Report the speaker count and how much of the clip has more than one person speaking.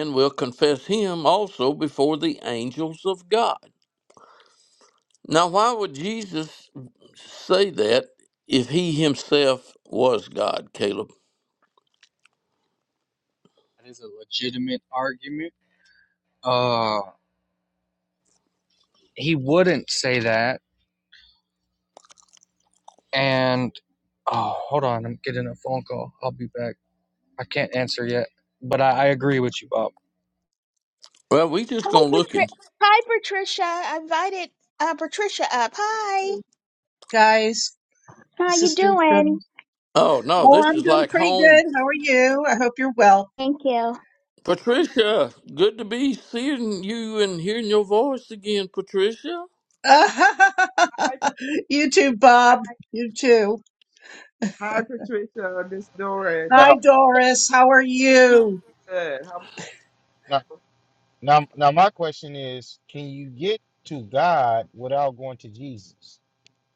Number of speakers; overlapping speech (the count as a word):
six, about 4%